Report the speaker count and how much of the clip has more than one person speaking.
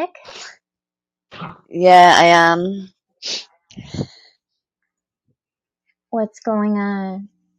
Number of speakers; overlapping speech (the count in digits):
2, no overlap